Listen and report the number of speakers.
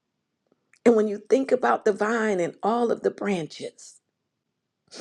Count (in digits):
1